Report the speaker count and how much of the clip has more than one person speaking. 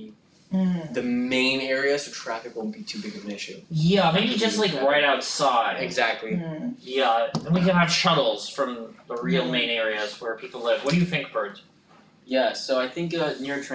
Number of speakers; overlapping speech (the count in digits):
3, about 12%